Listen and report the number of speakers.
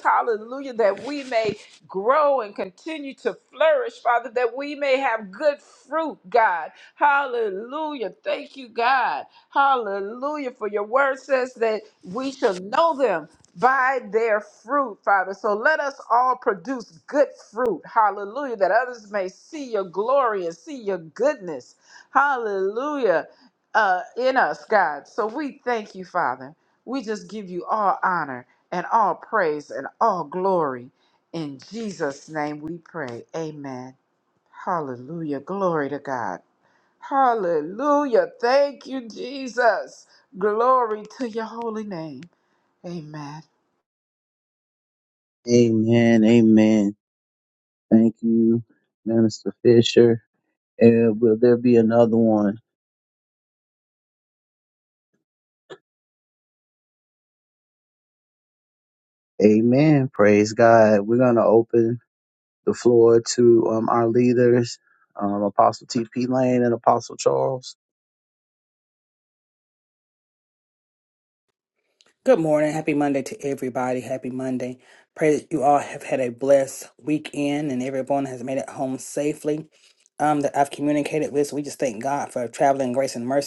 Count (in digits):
3